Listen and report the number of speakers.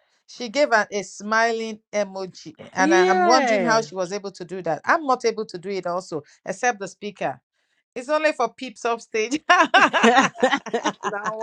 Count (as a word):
two